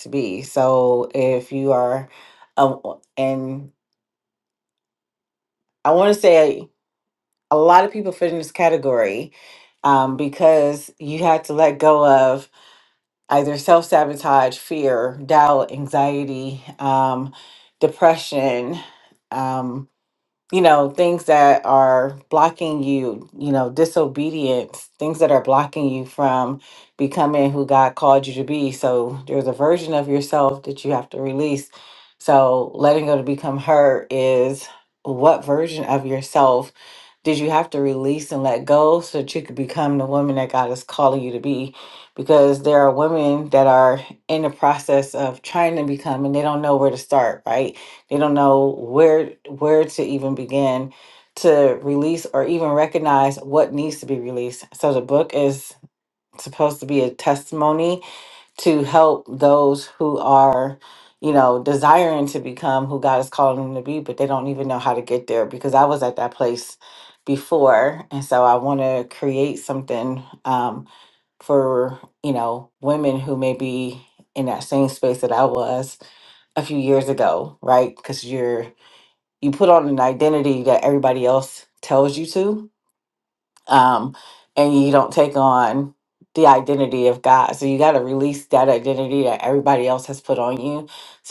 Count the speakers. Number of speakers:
1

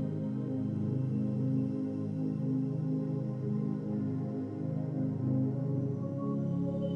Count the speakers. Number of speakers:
0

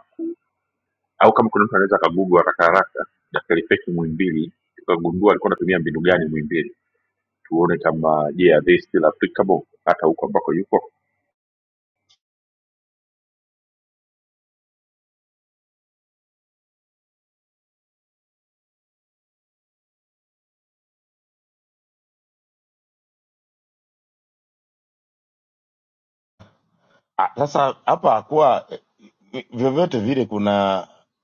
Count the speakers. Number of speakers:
2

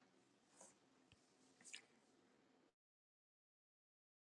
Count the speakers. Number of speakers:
0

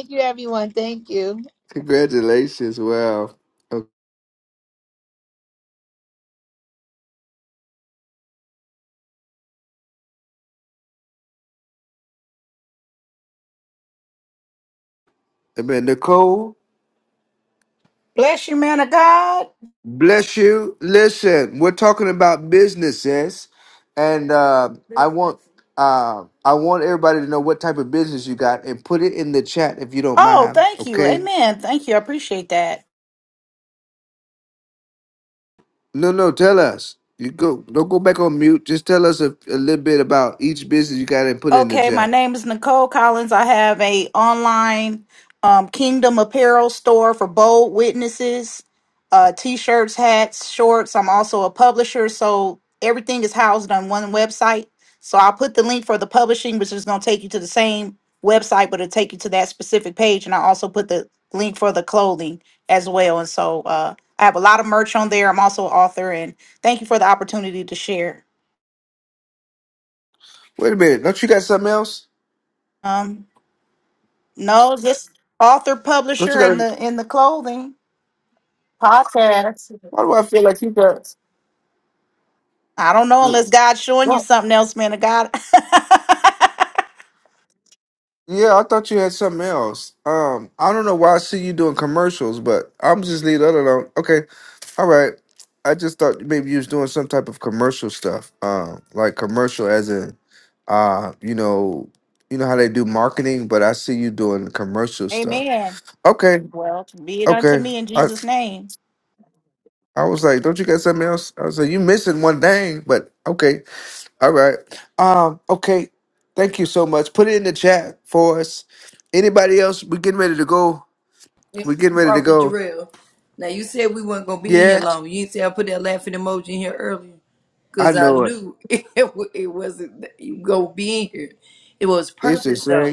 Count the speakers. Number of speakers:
4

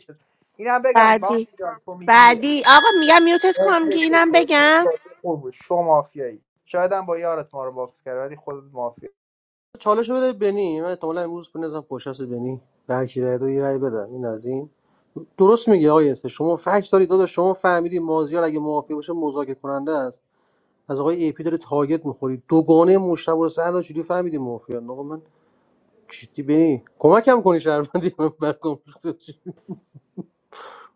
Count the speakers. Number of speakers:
3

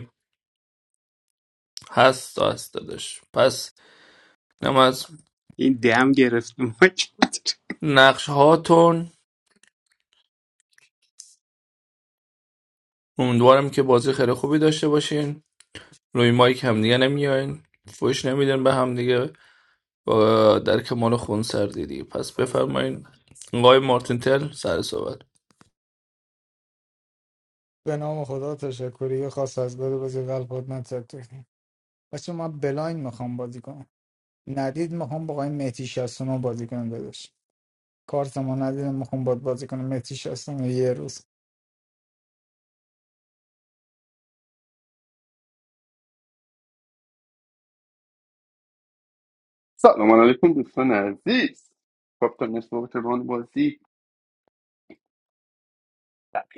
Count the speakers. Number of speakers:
4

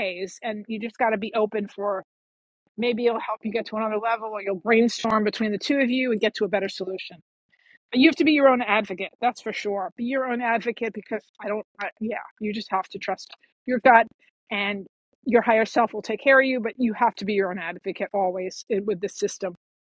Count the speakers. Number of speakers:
1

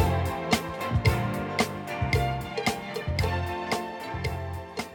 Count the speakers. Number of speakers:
0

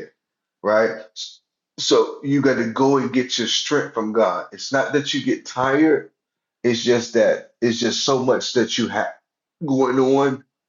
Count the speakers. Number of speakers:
1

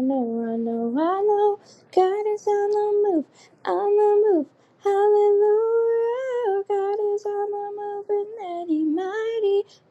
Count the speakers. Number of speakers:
1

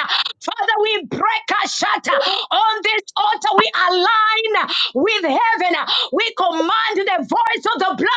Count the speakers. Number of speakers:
1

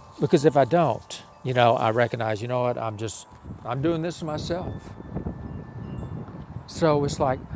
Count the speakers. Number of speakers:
1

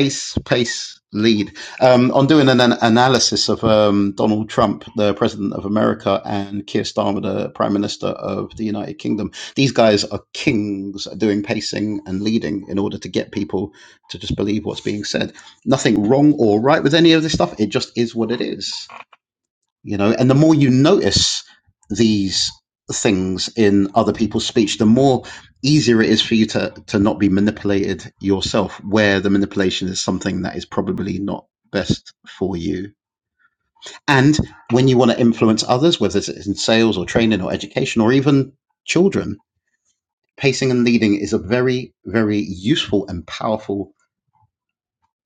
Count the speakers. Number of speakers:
1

